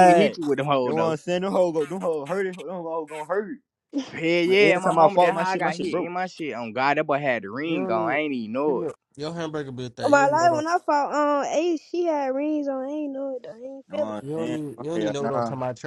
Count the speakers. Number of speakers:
4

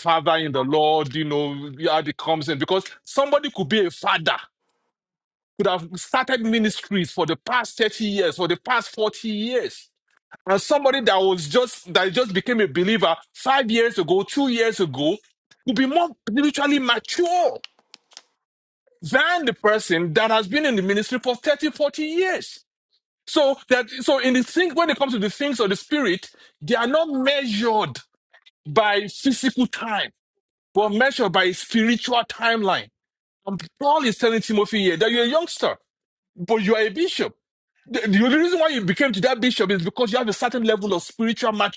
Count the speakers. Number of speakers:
1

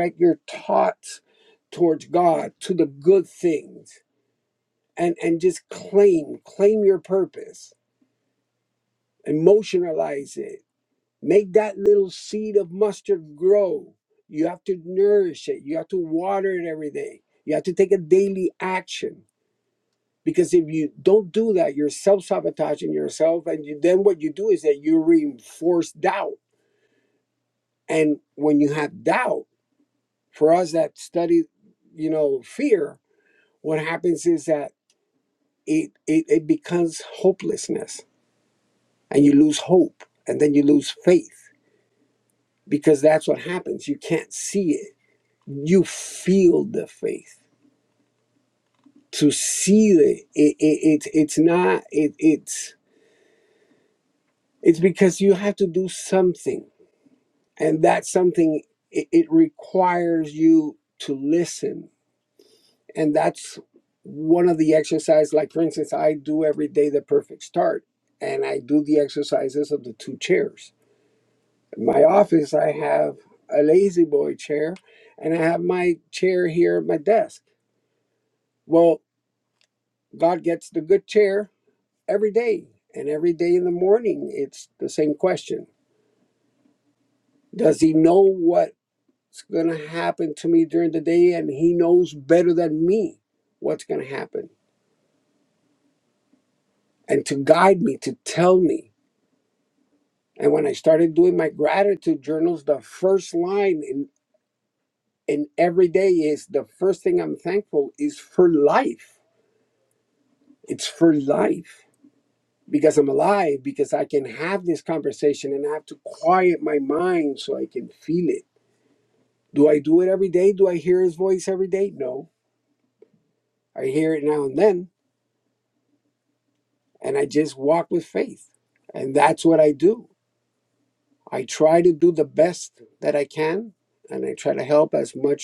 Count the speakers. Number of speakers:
1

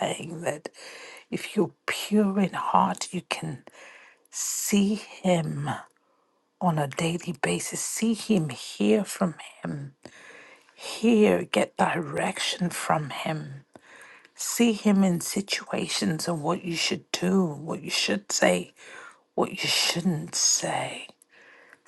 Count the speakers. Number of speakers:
1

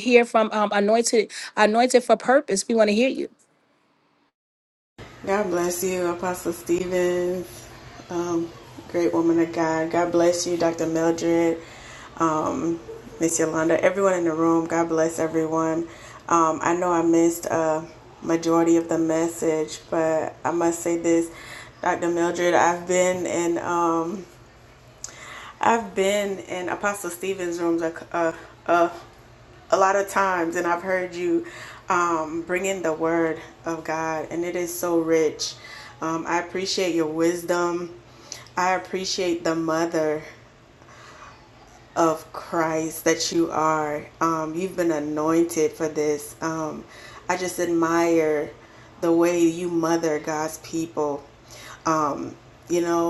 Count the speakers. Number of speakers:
2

